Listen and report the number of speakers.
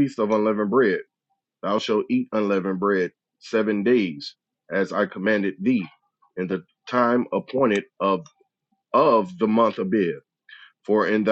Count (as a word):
one